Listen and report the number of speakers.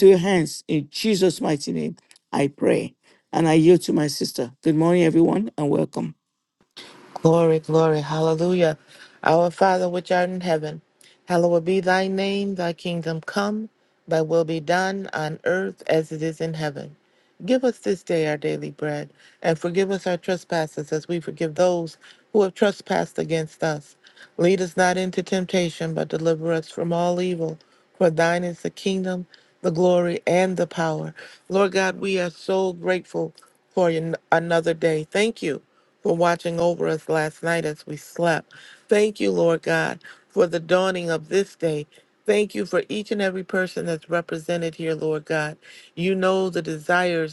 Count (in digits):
2